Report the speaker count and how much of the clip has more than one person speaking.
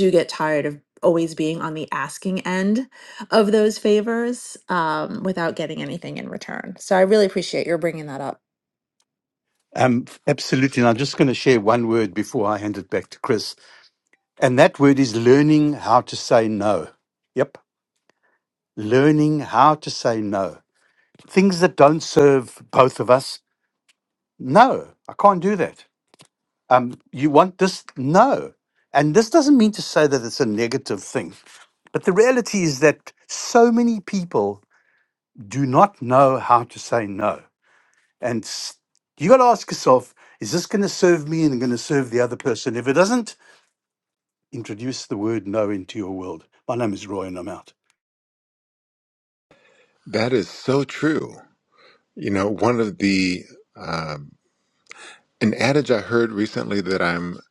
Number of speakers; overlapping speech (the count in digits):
3, no overlap